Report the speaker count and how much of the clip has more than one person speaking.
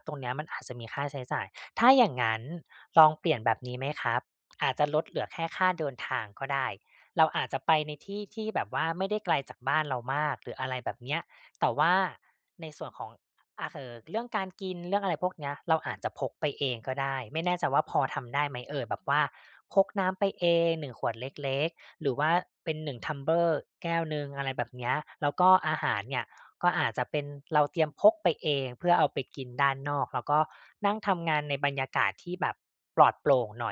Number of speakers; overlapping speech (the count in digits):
1, no overlap